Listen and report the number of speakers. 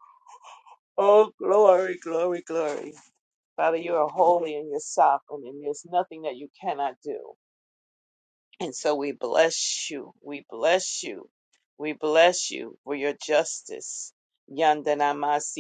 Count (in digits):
1